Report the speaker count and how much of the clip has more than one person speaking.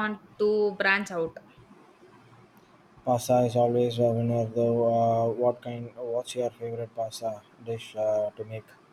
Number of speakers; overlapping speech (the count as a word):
two, no overlap